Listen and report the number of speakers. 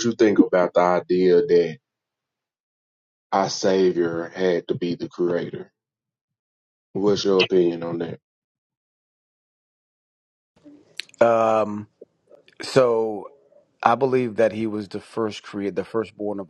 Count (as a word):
two